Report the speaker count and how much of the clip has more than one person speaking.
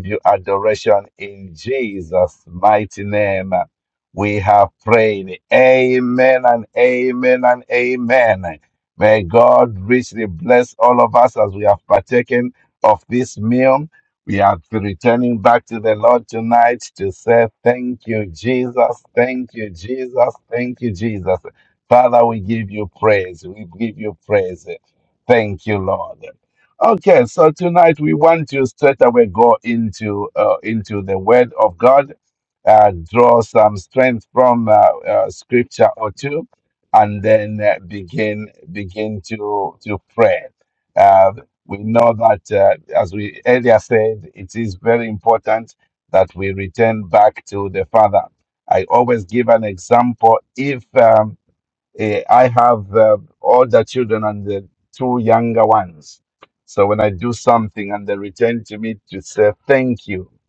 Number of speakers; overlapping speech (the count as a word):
one, no overlap